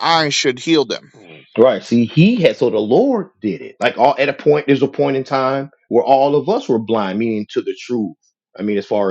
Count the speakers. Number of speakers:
2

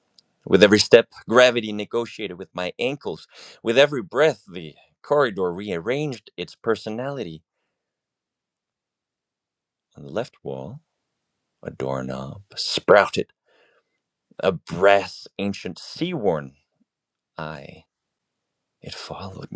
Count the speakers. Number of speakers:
1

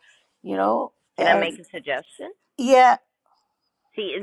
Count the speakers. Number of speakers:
2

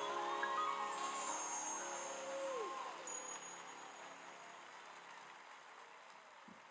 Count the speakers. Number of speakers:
0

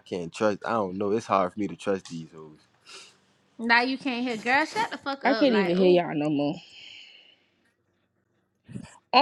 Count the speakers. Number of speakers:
3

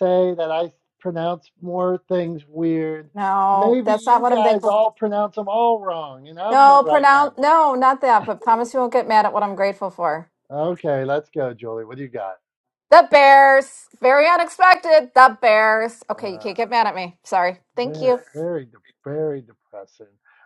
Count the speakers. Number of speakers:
2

